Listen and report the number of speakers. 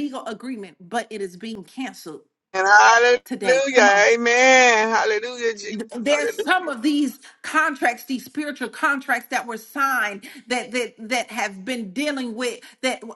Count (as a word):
two